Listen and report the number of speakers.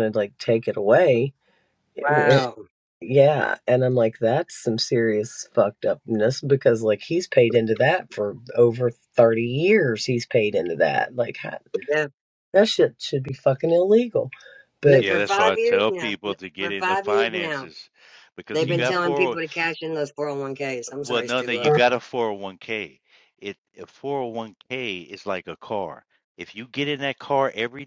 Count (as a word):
three